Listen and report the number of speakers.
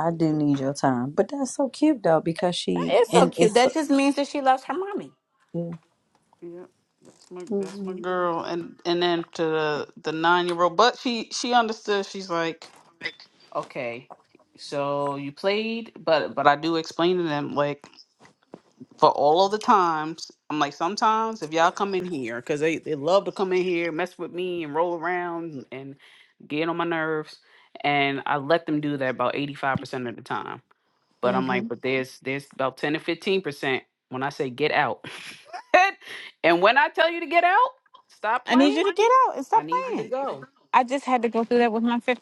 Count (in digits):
3